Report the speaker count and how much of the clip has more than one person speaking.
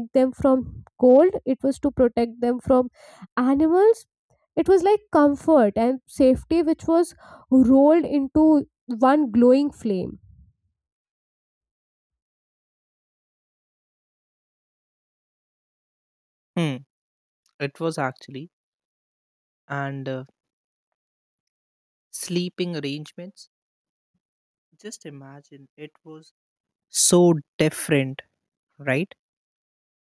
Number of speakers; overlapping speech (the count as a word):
two, no overlap